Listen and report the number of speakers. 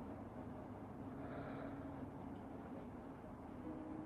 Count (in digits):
0